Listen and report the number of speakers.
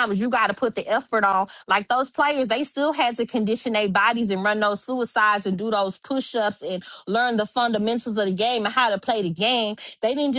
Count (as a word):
one